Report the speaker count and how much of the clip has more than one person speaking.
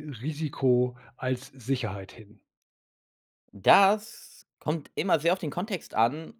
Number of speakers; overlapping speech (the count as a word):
two, no overlap